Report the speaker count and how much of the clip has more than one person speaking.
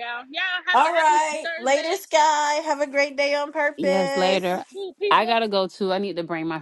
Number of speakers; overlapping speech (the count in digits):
3, about 35%